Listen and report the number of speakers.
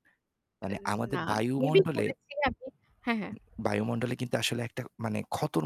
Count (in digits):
2